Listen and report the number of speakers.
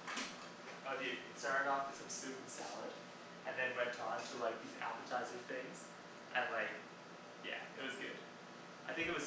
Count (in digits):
1